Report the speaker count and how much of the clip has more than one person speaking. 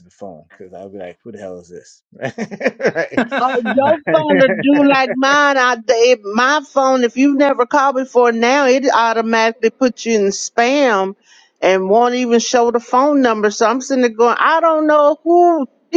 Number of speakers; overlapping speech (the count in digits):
2, no overlap